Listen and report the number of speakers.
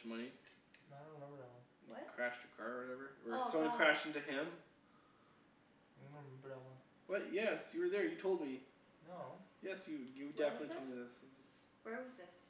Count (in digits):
3